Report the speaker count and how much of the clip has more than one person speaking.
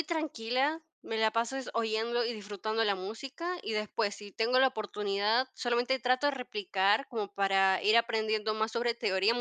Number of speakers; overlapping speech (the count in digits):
1, no overlap